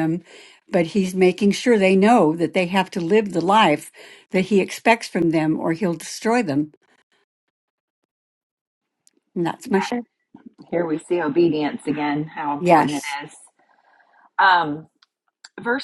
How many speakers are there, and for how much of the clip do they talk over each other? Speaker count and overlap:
2, about 3%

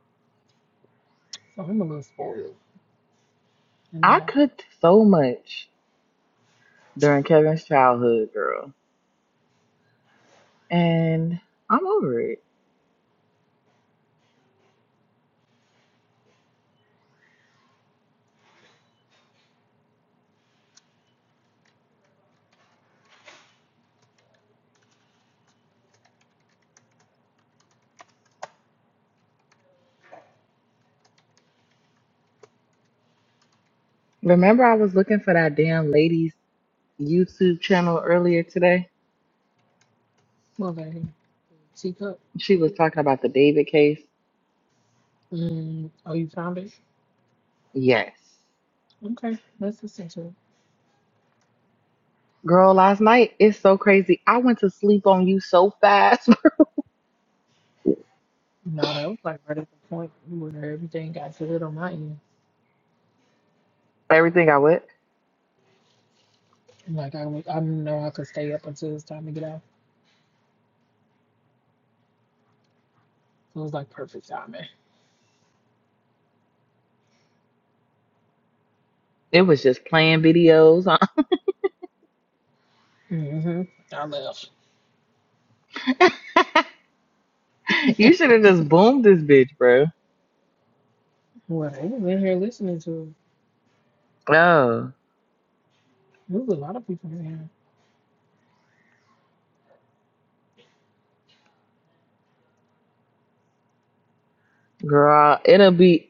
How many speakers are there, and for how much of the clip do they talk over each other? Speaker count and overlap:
2, under 1%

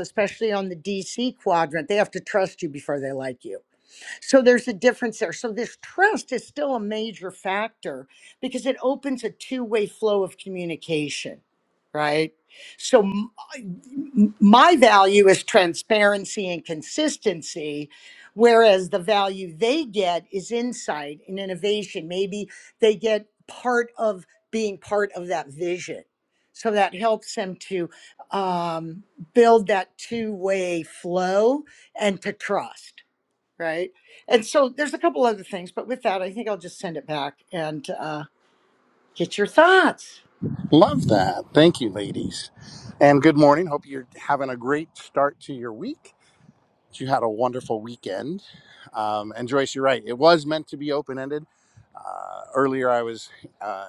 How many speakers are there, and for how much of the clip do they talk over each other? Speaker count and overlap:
2, no overlap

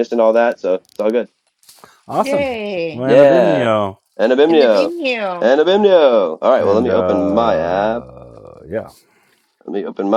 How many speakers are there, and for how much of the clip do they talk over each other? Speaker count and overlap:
3, about 28%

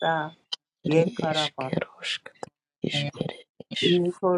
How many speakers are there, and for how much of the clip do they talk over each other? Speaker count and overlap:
2, about 24%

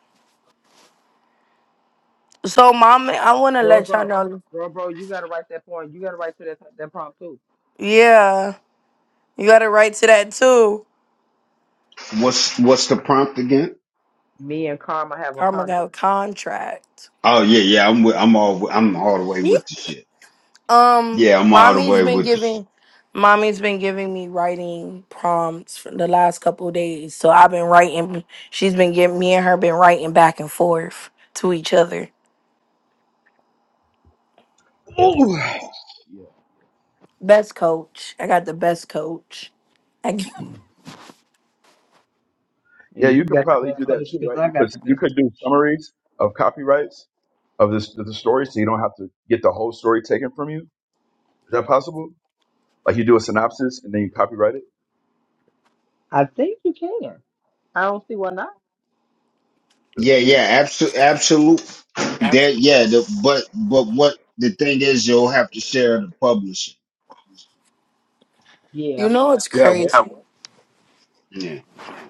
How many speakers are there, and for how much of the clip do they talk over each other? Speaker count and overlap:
4, about 7%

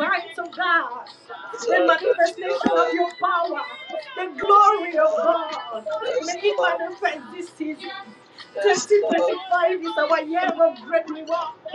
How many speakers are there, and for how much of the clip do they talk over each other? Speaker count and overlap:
2, about 30%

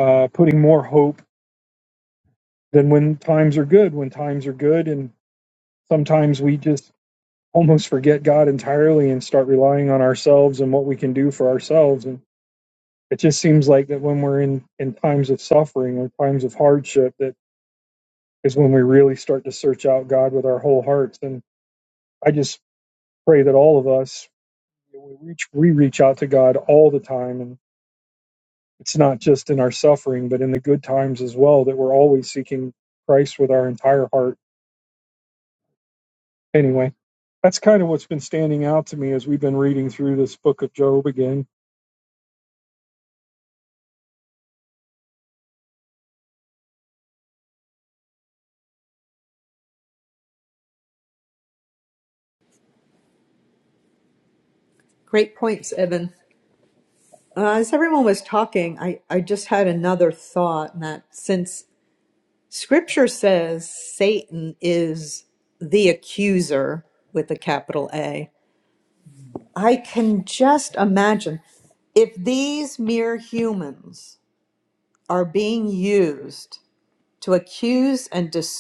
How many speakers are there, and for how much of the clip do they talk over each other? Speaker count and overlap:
2, no overlap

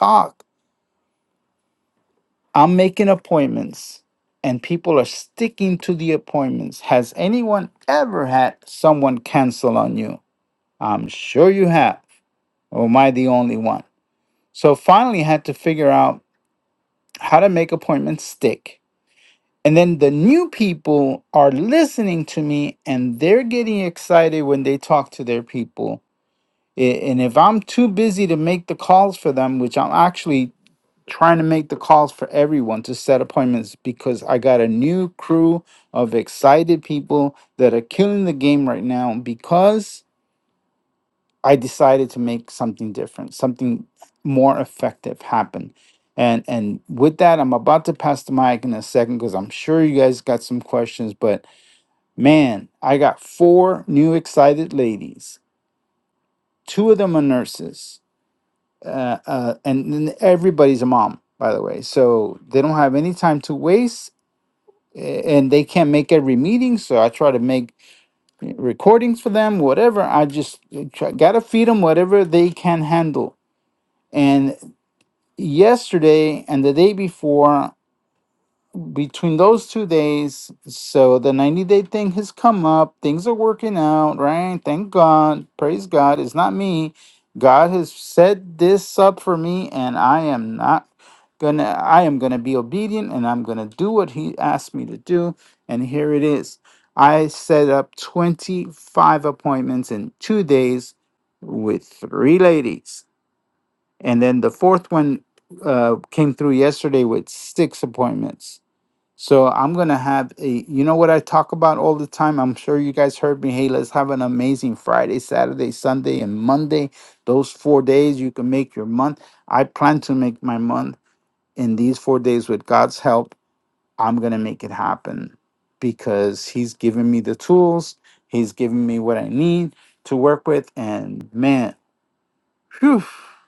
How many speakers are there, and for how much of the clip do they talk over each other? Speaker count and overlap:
1, no overlap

